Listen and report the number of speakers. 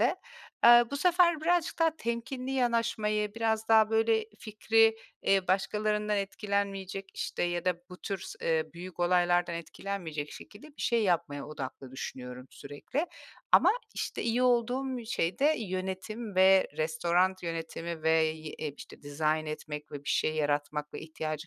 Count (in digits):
1